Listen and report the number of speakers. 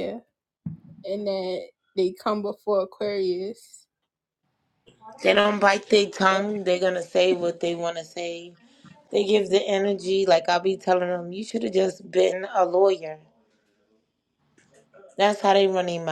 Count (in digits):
2